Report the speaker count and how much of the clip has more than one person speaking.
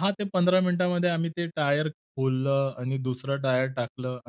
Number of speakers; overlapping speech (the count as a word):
one, no overlap